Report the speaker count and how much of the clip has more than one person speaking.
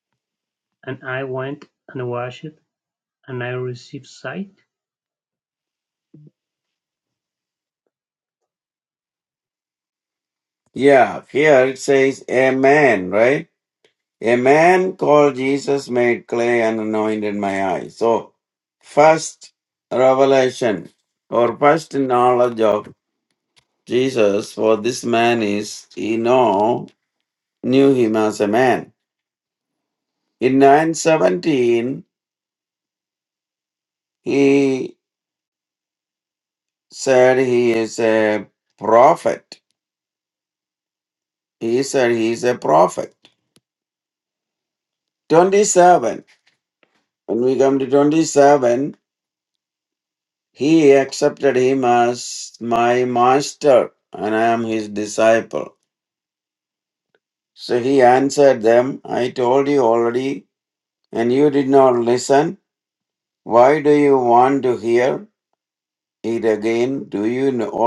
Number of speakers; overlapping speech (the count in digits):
2, no overlap